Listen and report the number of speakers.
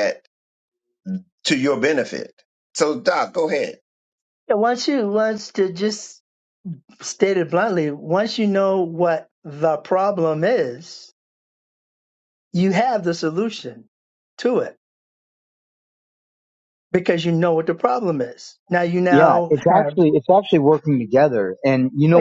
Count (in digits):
3